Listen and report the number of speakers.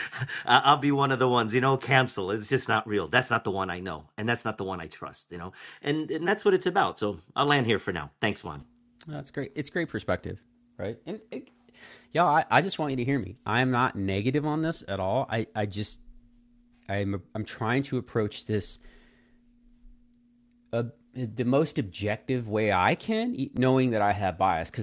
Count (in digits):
2